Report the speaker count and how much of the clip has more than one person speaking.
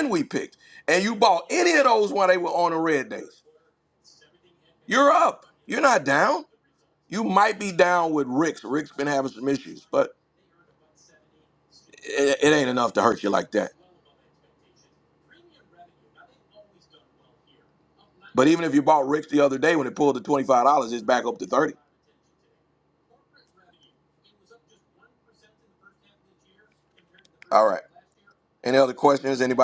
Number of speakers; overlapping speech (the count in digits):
1, no overlap